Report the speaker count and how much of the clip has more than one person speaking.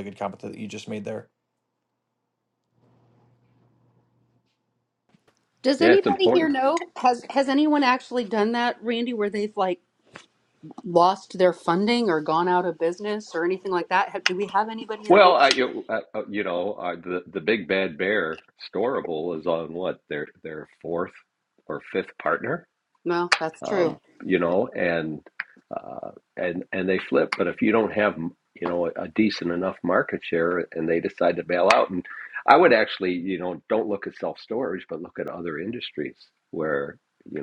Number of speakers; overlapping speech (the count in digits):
3, about 4%